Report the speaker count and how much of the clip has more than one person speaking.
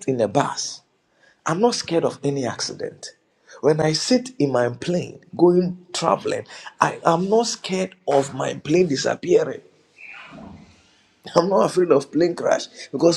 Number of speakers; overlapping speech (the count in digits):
1, no overlap